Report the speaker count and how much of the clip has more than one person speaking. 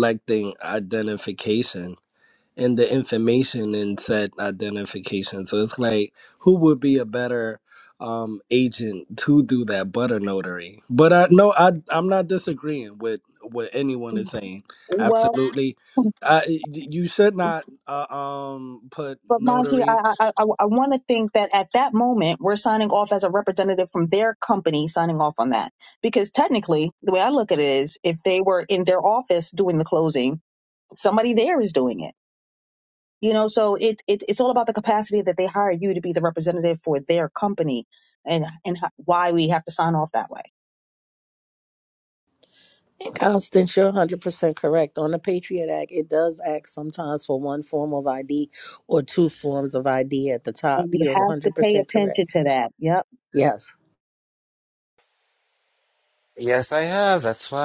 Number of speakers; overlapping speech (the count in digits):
4, about 4%